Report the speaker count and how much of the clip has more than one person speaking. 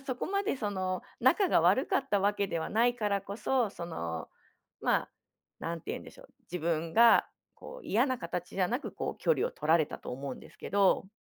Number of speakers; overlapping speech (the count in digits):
1, no overlap